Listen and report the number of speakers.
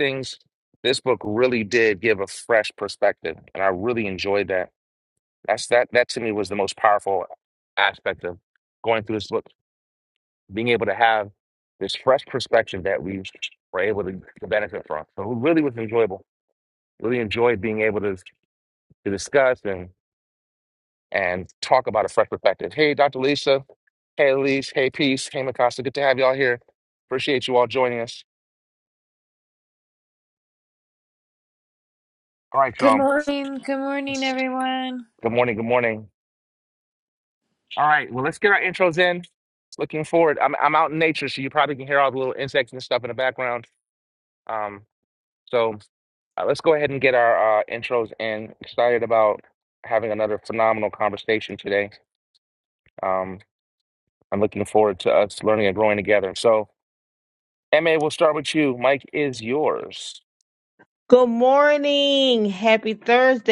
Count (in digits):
3